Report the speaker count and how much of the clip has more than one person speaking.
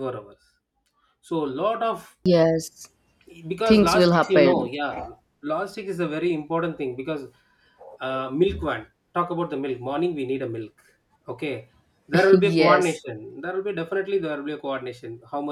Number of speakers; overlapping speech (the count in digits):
2, about 11%